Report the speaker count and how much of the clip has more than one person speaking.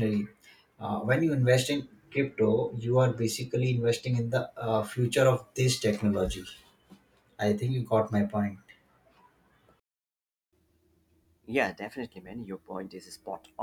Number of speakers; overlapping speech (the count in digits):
2, no overlap